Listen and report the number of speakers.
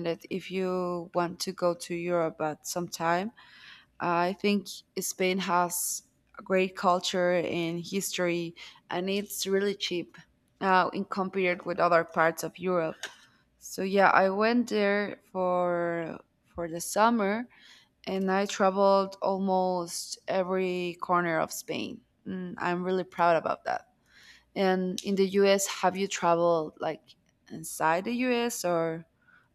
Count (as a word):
one